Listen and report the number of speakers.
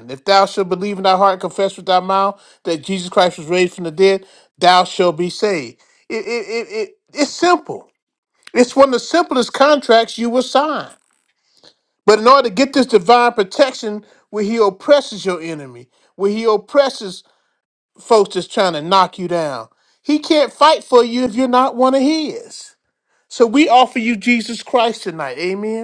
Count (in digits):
1